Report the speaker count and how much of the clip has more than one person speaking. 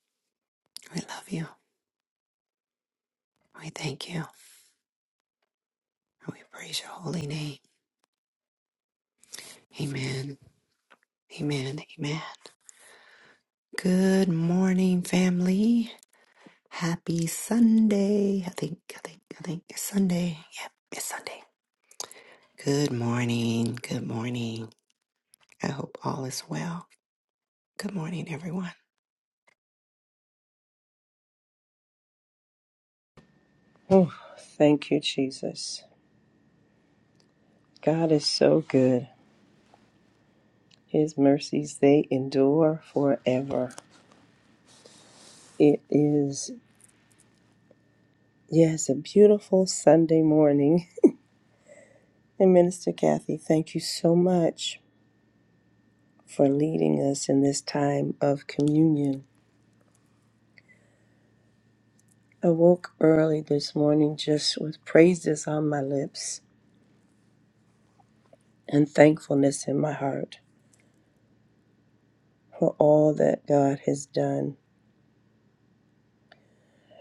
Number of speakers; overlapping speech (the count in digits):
2, no overlap